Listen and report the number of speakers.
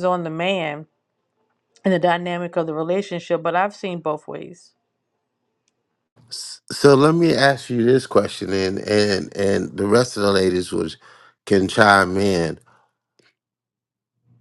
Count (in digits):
2